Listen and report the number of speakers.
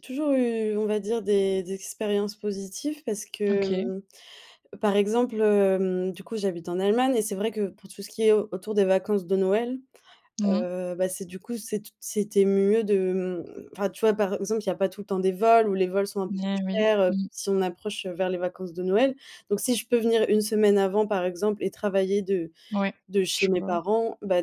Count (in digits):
2